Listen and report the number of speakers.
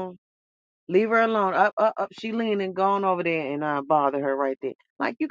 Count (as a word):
one